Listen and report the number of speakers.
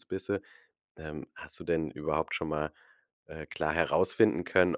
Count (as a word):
one